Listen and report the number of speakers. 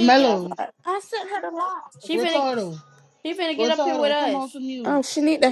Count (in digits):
3